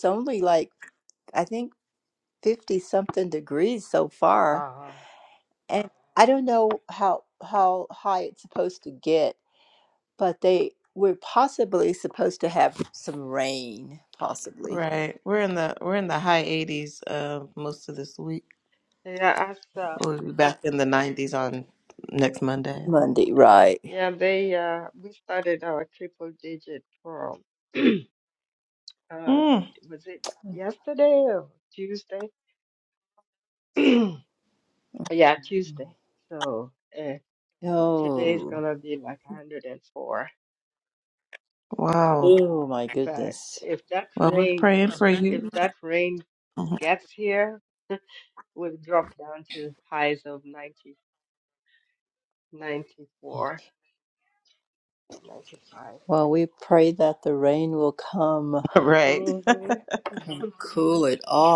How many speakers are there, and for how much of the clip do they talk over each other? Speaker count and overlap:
three, about 5%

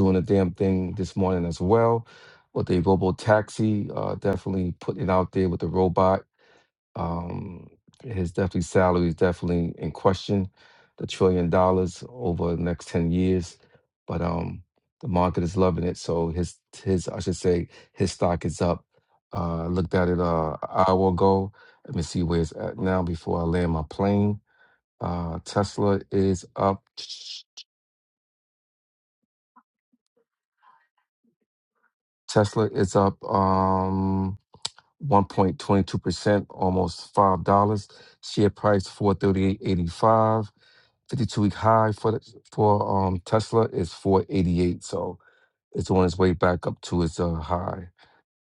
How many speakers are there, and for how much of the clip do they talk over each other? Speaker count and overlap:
one, no overlap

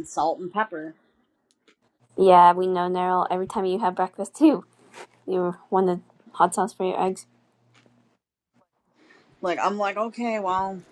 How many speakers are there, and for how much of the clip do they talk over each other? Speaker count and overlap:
two, no overlap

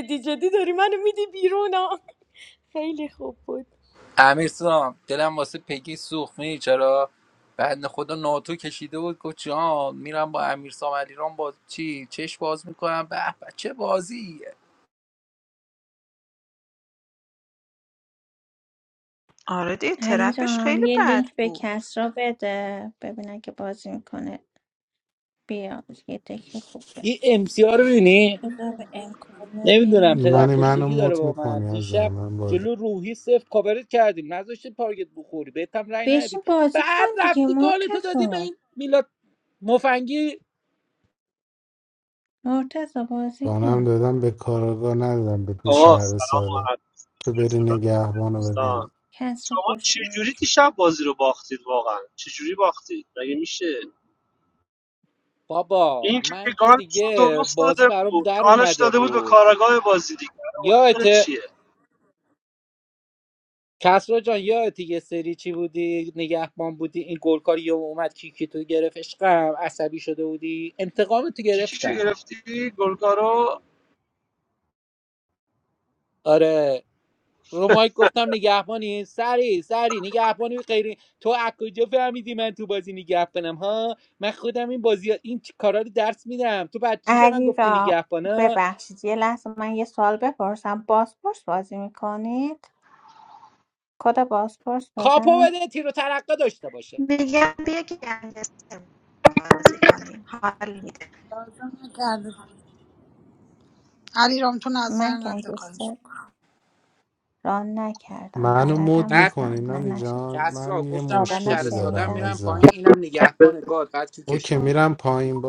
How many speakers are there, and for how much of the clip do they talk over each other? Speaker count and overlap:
seven, about 18%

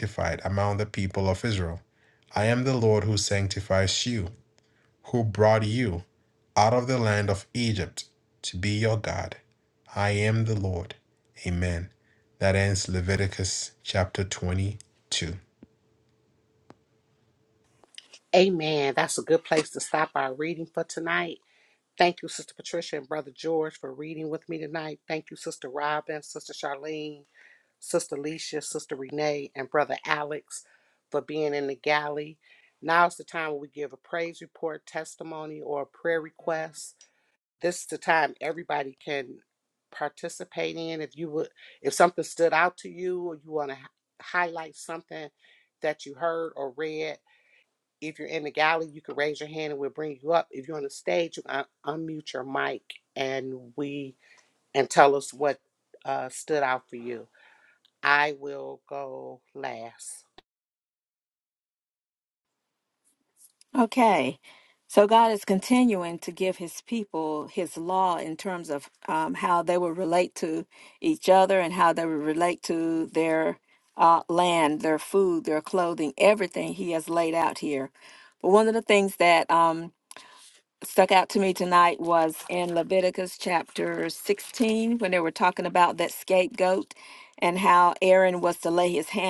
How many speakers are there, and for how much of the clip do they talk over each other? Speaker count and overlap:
three, no overlap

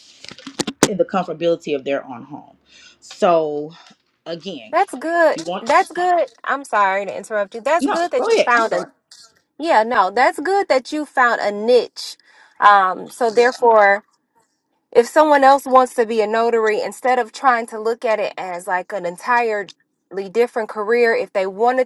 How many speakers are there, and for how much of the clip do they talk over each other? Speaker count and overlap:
two, about 7%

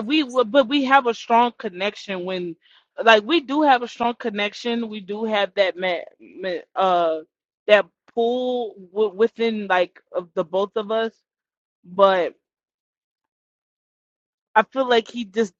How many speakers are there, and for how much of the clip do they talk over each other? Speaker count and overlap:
one, no overlap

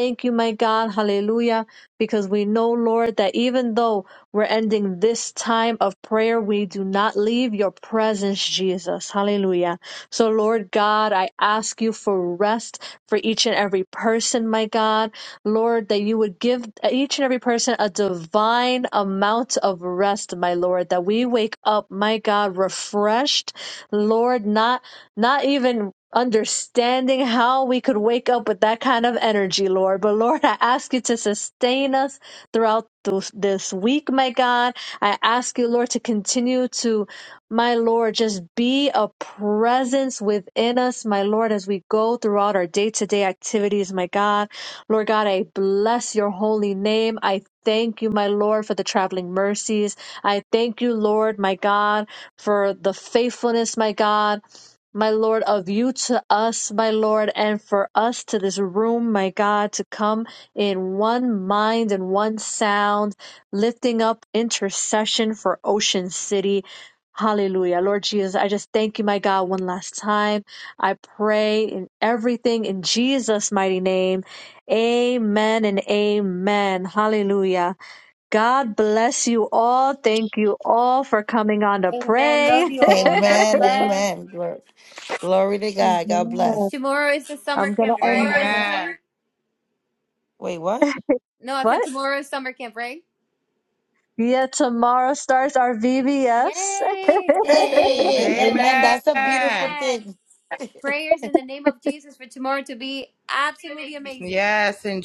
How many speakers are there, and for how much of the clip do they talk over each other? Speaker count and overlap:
four, about 6%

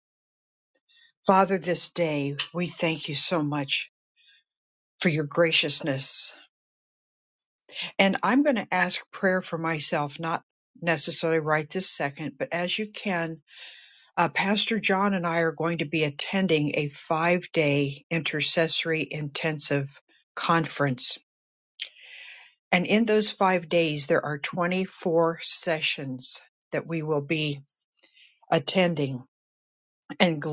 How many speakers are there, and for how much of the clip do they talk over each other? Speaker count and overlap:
one, no overlap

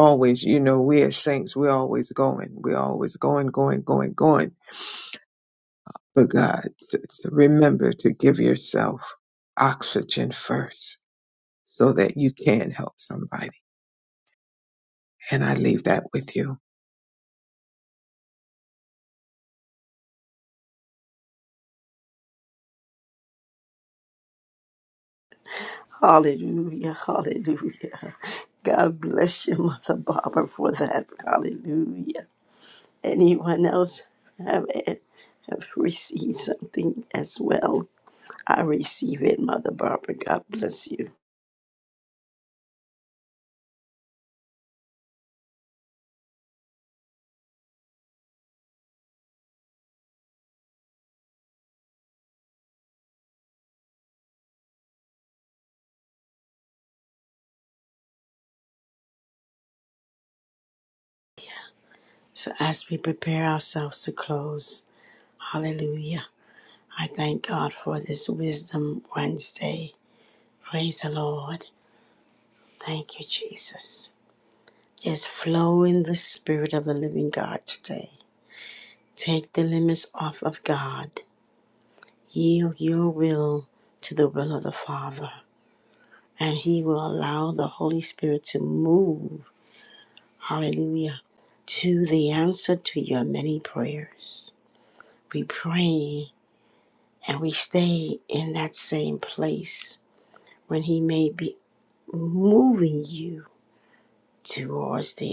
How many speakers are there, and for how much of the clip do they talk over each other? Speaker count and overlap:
two, no overlap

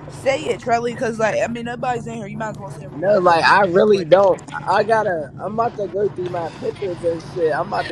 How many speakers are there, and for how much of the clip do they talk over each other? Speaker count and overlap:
two, about 14%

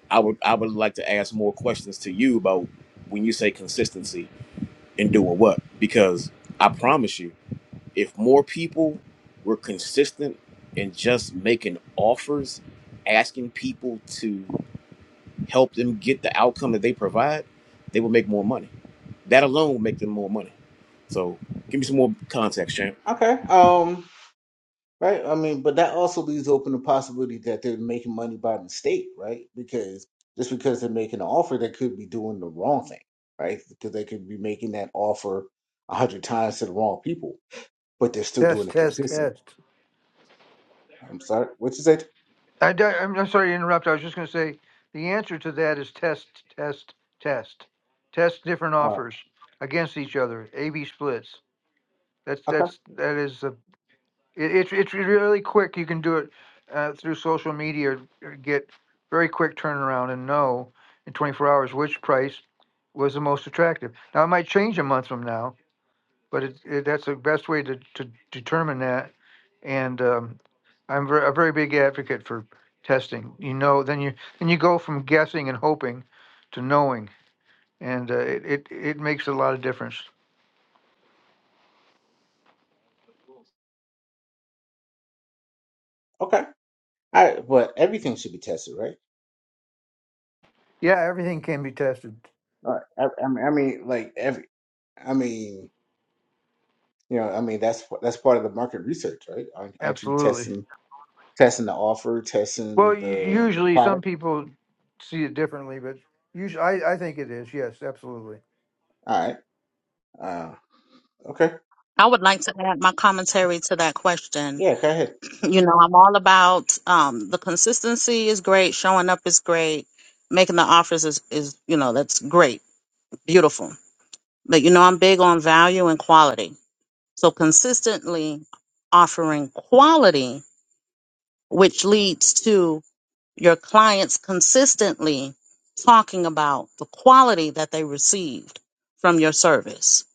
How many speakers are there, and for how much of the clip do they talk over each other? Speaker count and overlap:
four, about 2%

